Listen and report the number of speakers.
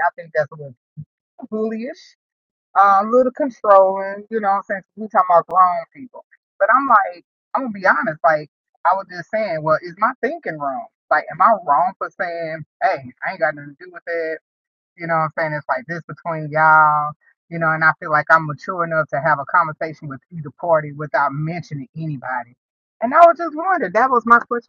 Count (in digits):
1